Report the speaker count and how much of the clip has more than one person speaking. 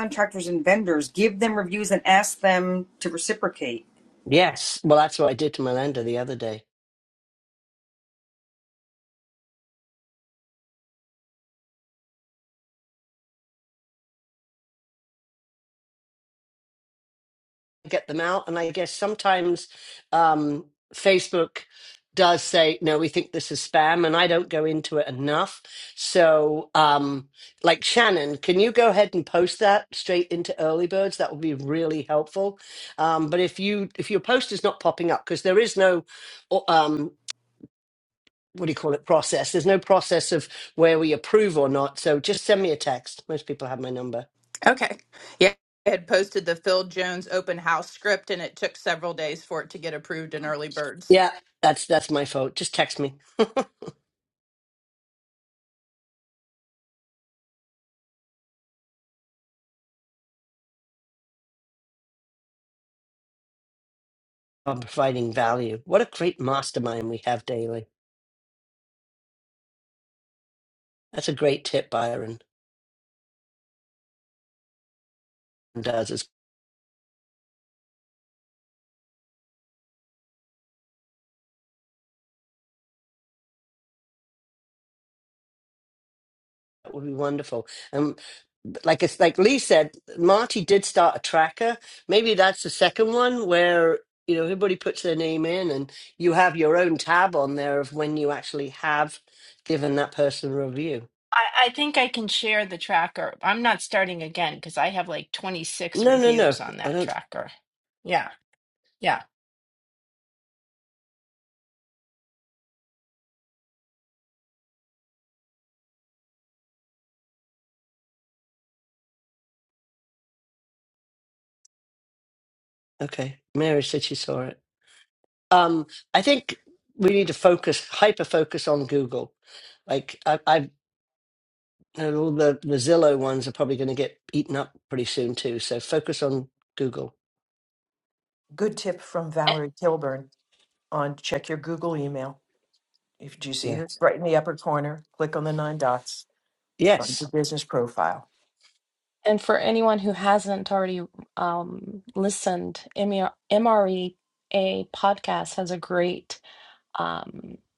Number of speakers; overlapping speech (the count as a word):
six, about 1%